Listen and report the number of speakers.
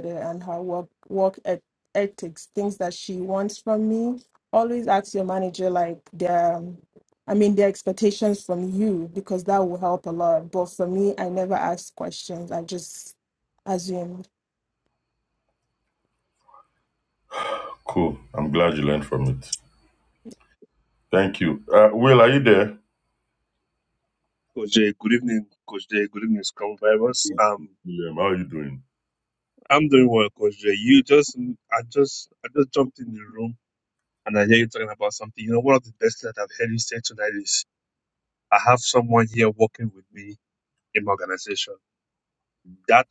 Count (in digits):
3